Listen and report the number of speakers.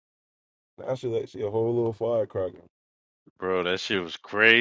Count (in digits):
2